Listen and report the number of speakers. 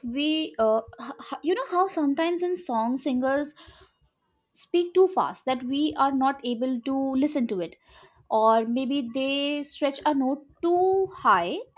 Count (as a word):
one